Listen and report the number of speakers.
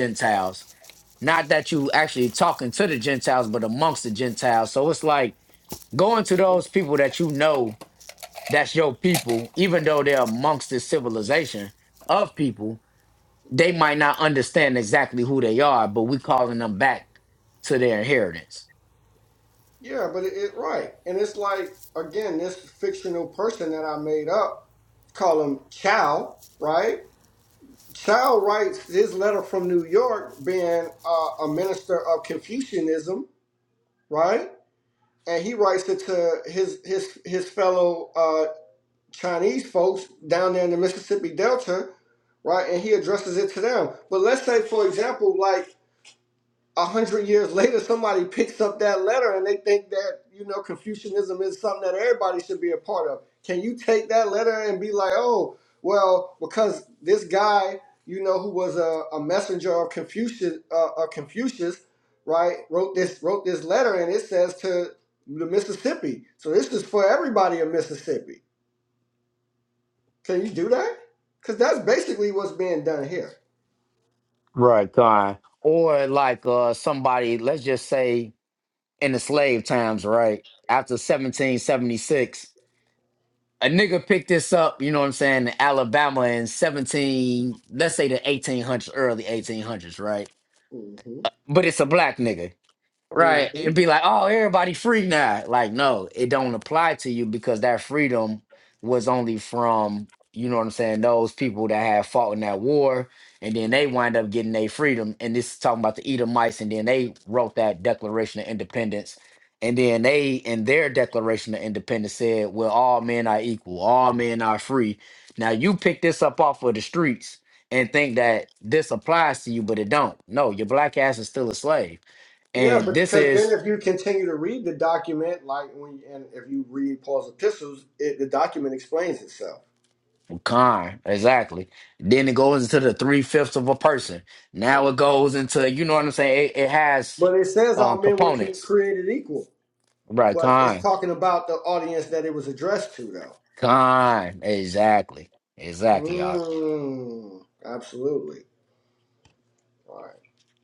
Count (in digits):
2